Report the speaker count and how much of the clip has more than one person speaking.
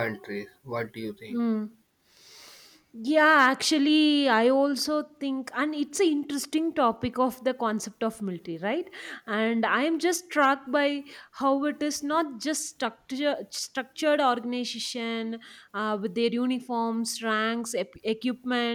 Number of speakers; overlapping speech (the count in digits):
2, under 1%